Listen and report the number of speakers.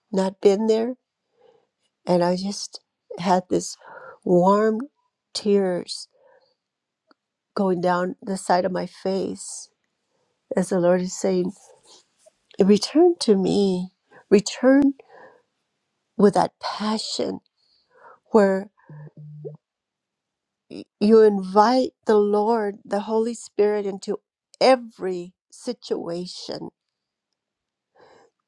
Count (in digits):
1